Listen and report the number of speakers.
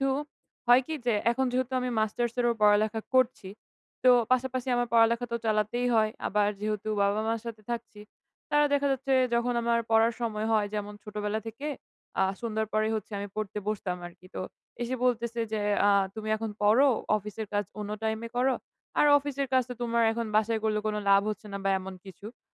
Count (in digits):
1